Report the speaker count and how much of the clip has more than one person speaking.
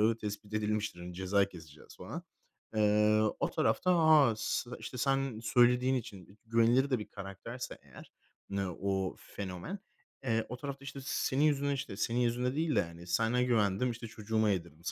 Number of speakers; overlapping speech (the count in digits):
1, no overlap